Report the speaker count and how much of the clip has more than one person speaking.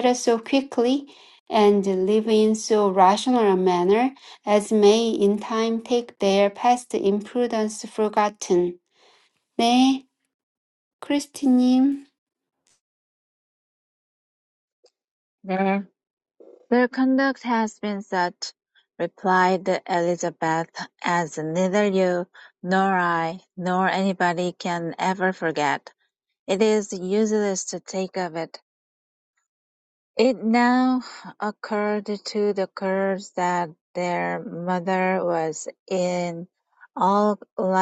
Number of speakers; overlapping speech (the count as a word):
two, no overlap